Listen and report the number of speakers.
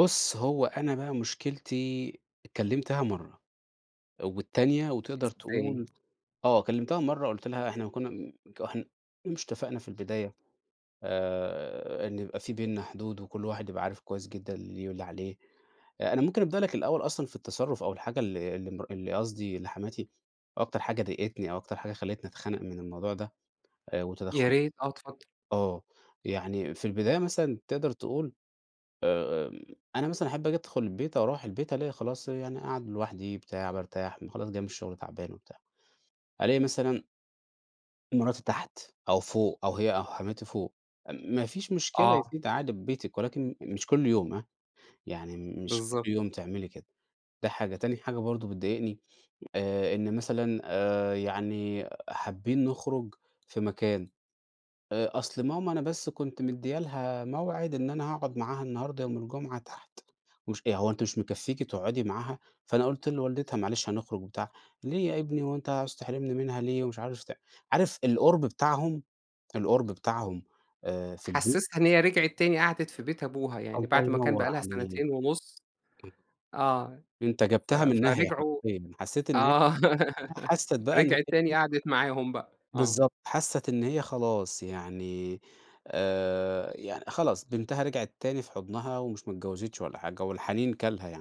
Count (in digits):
2